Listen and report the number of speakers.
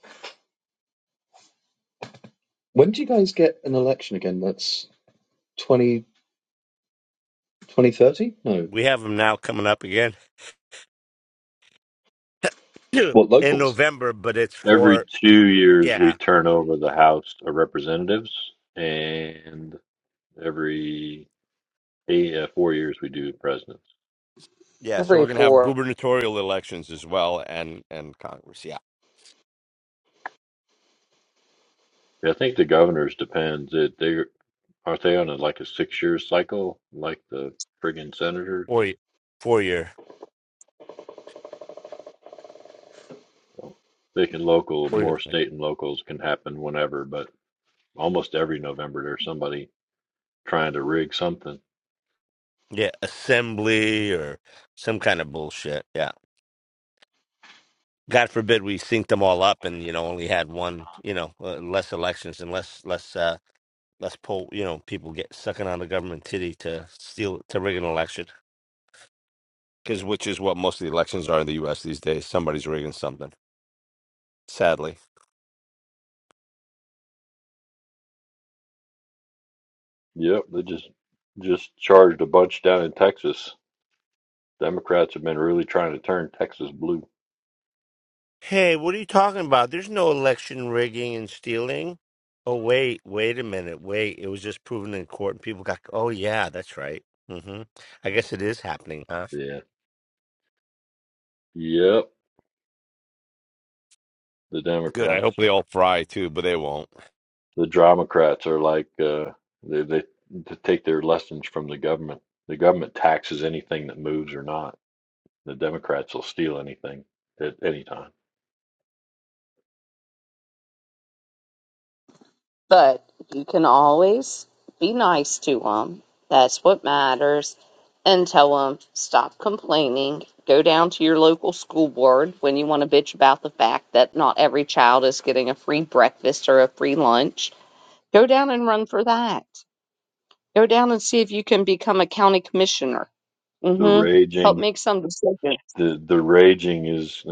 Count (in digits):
4